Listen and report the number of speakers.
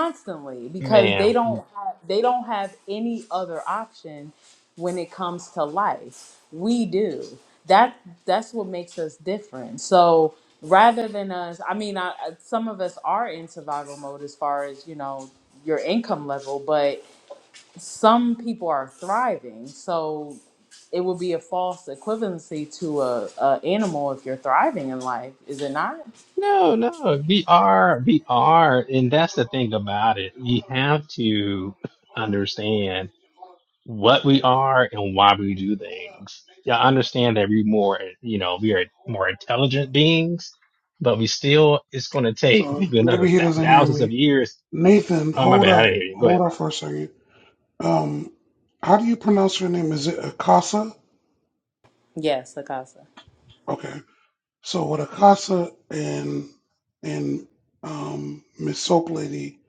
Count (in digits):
3